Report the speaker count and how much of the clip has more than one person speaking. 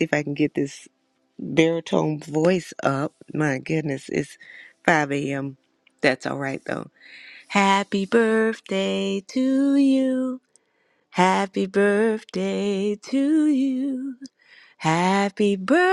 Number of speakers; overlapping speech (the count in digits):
1, no overlap